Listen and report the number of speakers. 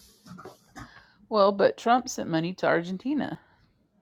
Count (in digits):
1